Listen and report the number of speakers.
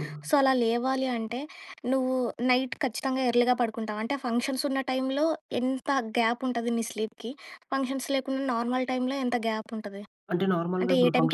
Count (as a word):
two